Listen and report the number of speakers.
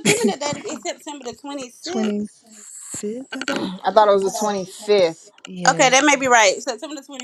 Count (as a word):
three